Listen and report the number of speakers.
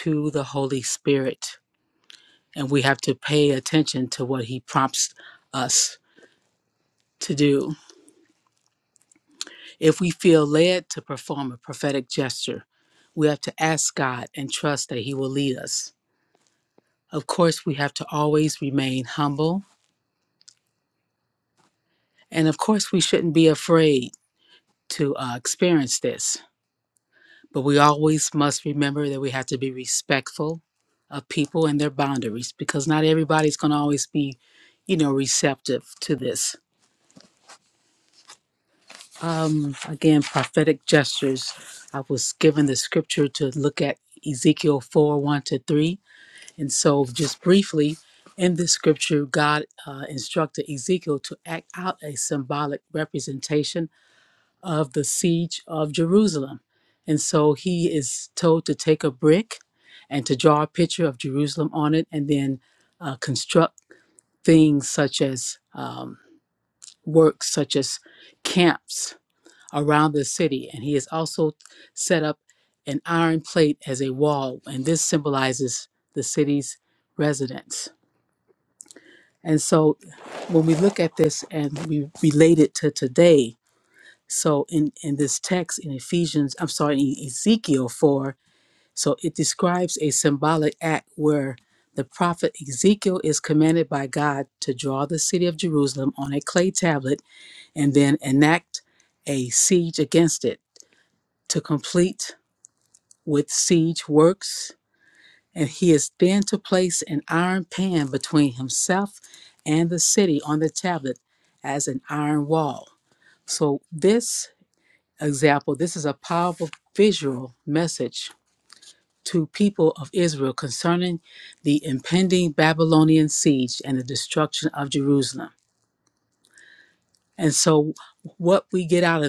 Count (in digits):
1